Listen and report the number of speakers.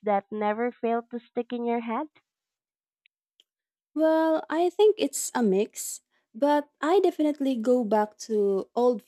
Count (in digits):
2